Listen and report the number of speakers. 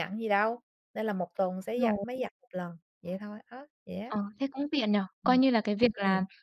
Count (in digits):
2